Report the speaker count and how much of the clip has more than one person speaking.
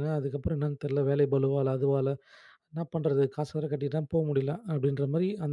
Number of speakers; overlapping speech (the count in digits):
1, no overlap